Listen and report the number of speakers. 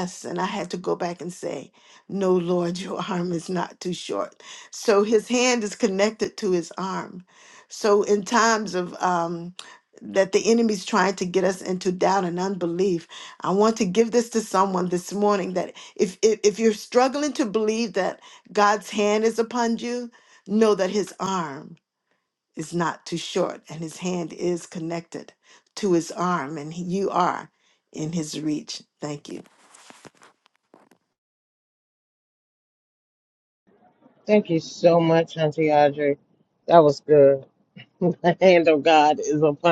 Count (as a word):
two